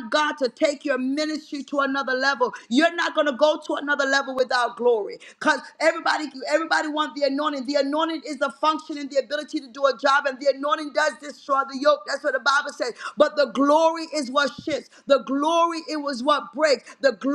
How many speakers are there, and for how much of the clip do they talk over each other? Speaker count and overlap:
one, no overlap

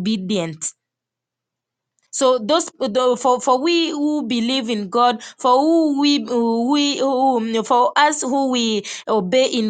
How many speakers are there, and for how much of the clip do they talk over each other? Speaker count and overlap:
one, no overlap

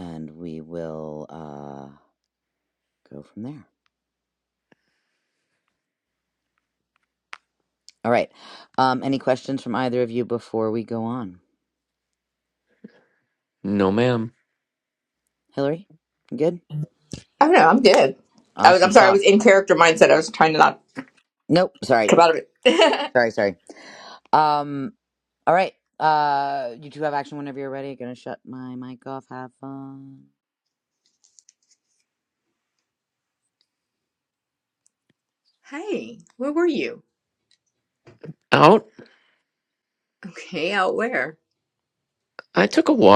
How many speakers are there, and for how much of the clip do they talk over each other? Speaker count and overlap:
three, about 2%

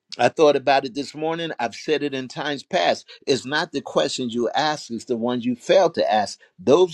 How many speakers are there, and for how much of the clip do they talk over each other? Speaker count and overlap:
one, no overlap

